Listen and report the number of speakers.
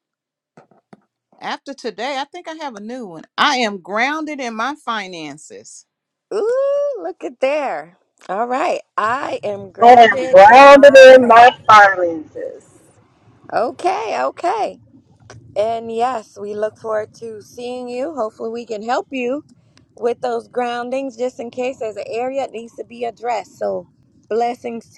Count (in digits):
3